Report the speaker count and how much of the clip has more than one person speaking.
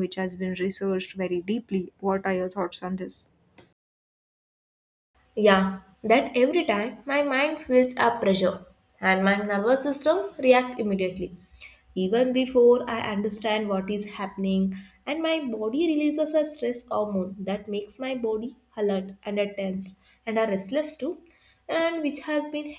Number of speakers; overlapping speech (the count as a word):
two, no overlap